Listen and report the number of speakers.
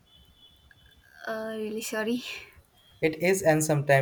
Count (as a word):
two